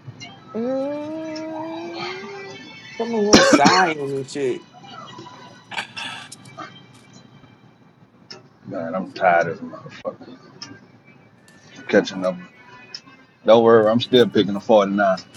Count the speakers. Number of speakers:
3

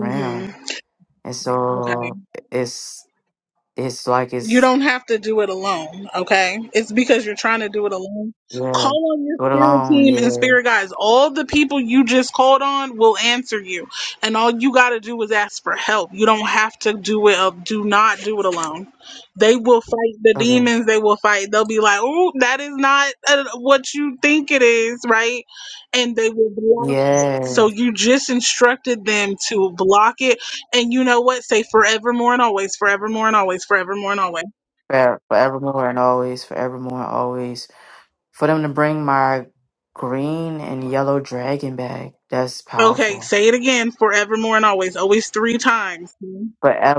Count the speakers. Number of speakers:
2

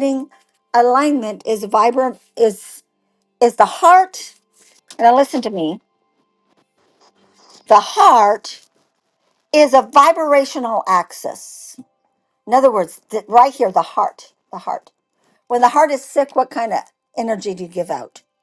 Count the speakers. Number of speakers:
1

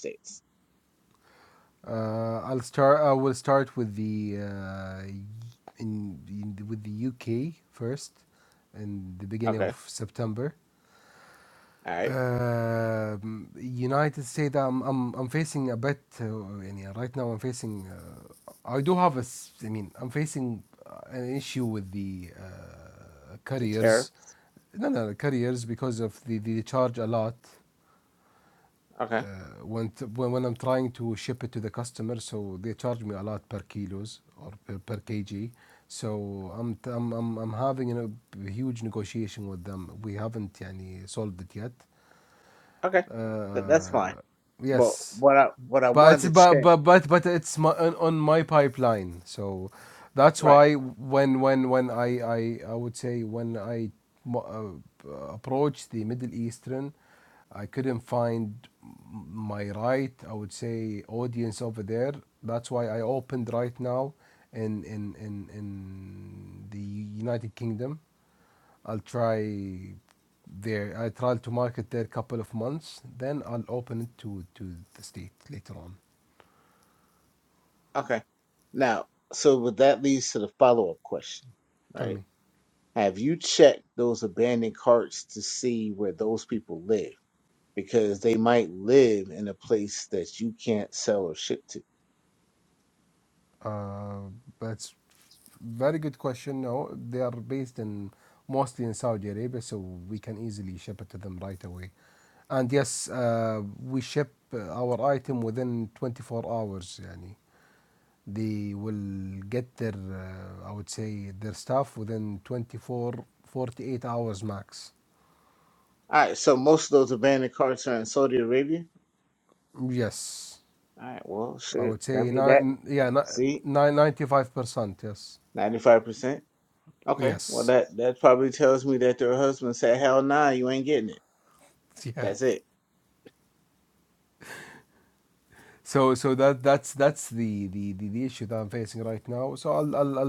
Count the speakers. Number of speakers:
2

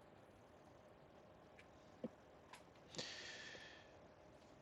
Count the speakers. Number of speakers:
0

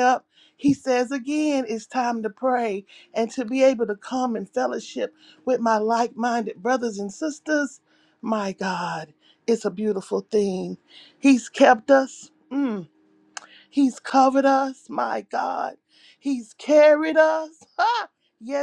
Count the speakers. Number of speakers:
1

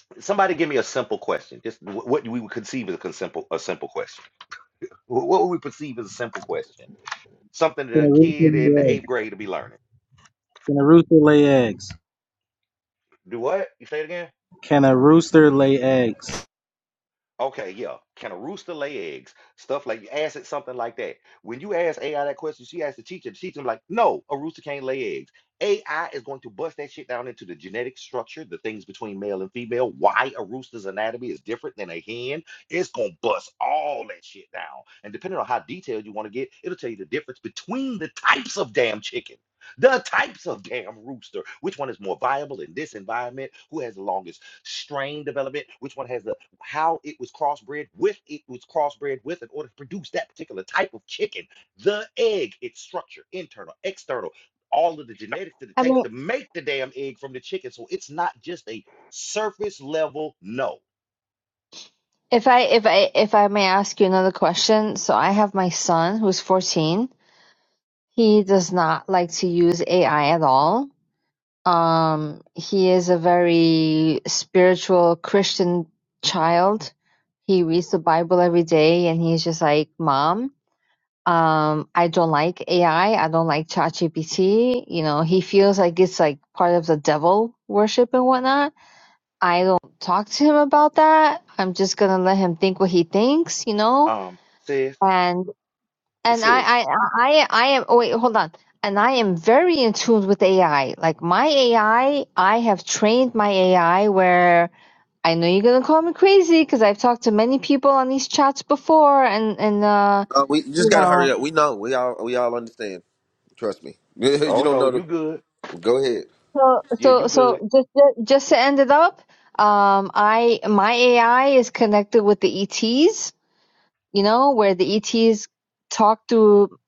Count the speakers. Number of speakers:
4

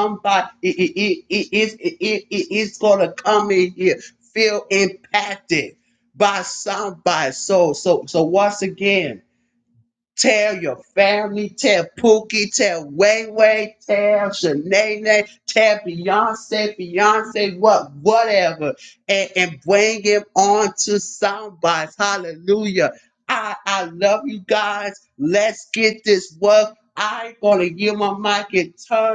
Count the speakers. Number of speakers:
1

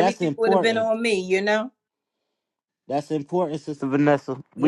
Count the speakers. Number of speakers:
2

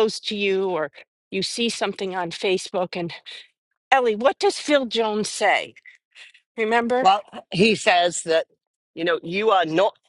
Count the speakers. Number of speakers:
2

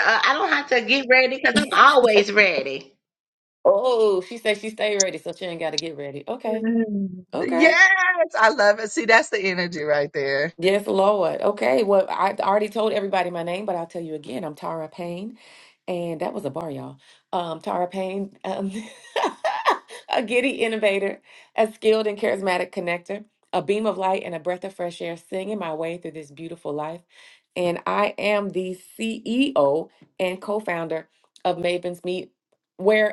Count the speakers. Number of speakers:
3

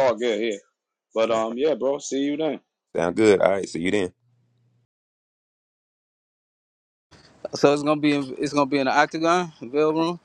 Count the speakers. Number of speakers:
3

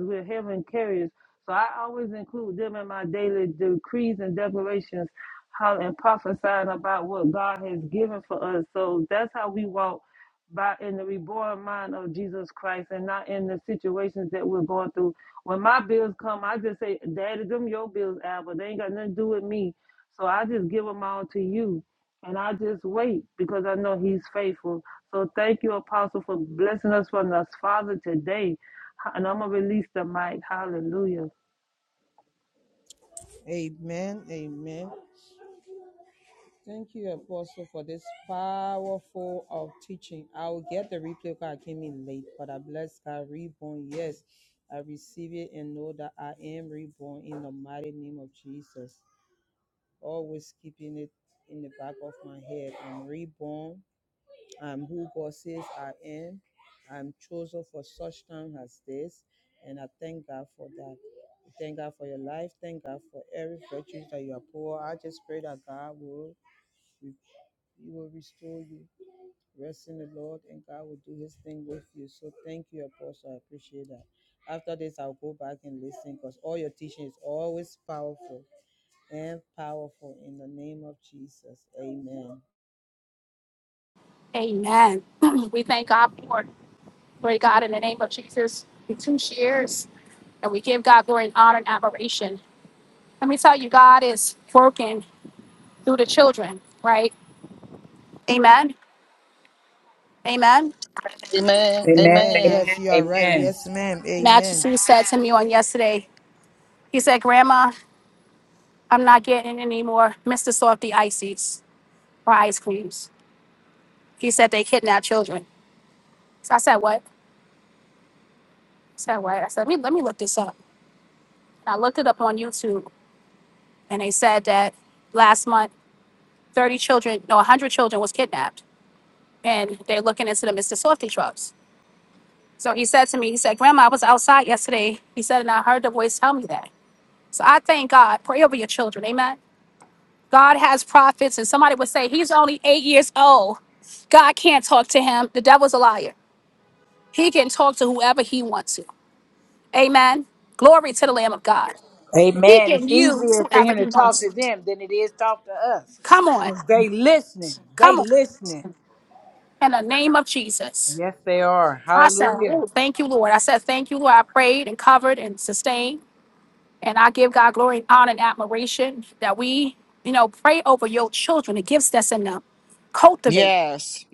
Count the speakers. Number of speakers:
5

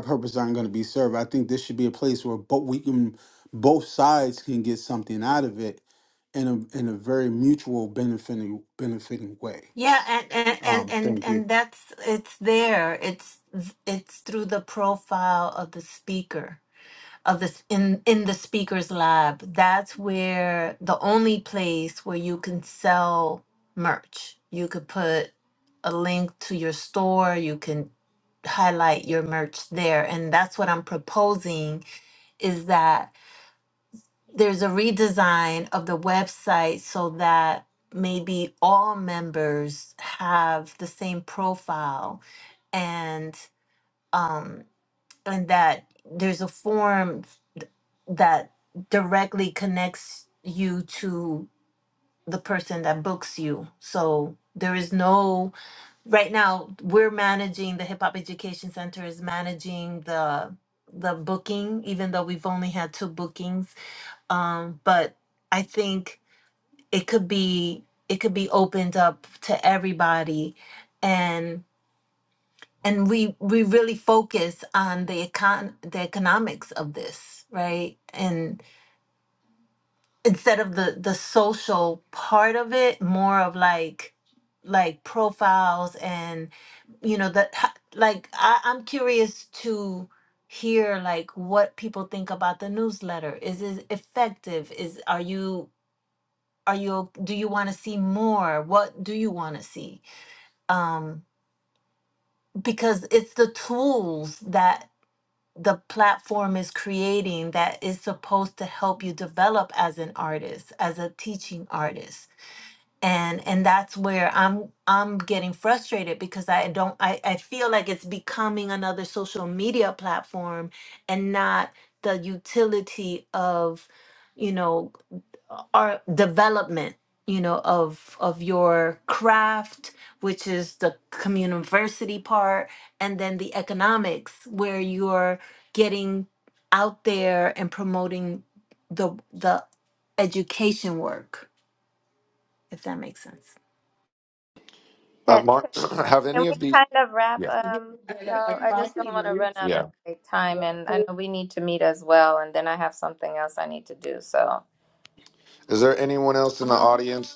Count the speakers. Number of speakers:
4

